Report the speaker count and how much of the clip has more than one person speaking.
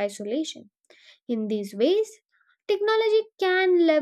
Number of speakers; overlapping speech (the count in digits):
1, no overlap